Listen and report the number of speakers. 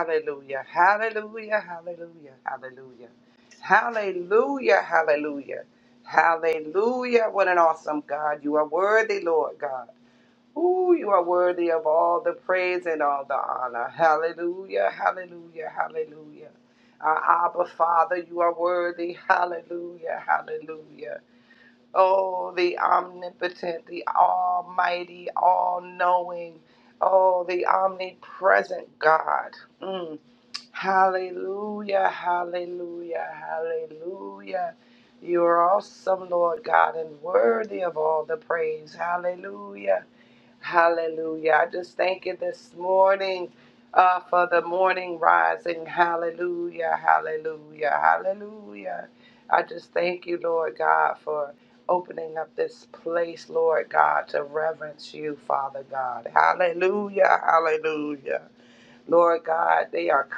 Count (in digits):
1